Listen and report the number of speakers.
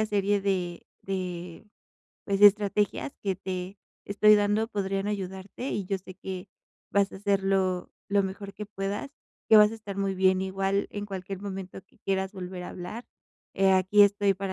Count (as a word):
one